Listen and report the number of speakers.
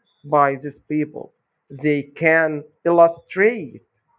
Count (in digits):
1